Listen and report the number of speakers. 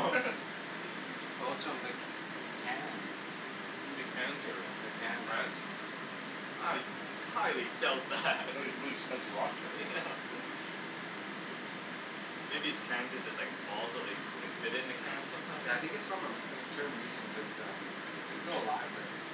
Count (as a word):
three